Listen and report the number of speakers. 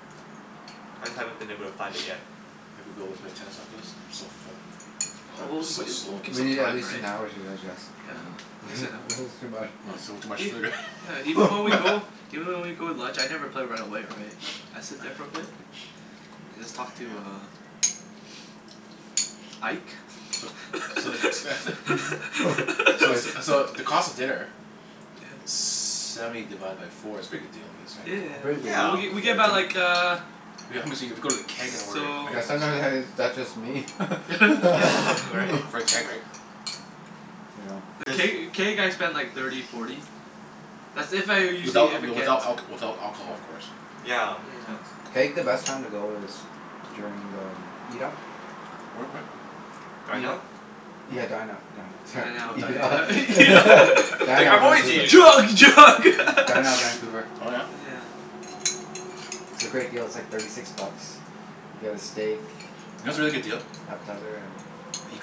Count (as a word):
four